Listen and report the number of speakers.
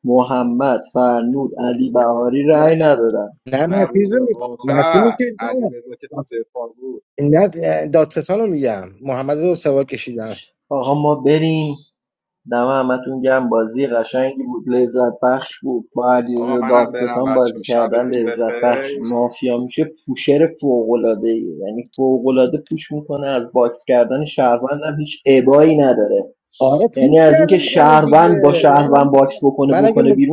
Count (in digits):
3